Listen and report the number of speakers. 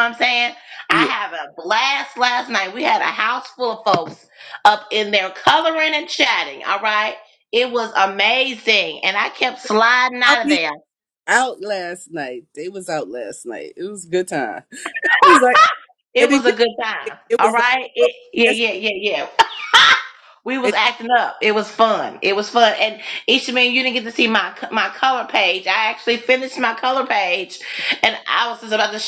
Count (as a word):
two